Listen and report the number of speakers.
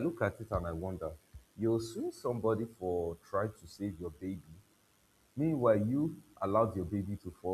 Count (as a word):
one